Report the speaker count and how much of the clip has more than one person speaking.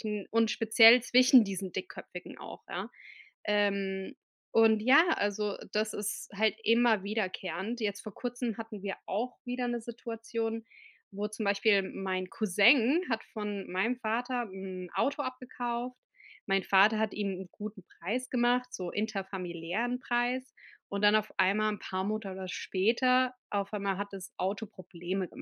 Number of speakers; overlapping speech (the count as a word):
one, no overlap